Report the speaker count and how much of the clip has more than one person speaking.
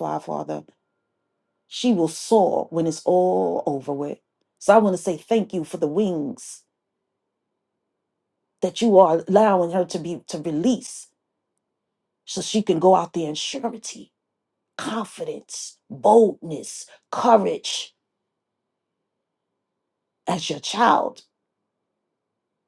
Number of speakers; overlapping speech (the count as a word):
one, no overlap